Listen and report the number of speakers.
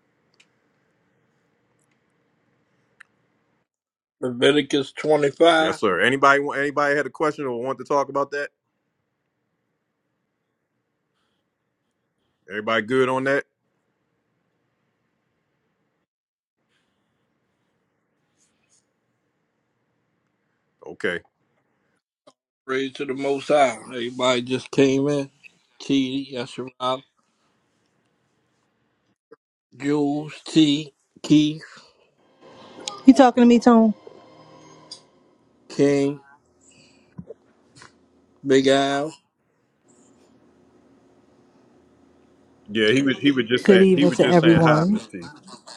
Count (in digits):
3